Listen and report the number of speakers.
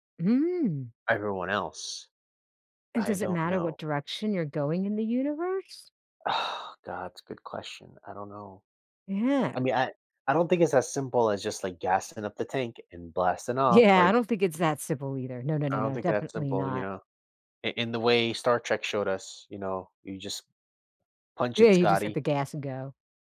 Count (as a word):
two